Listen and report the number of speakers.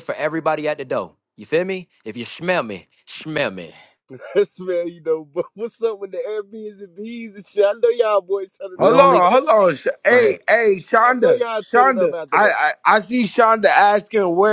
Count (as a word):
three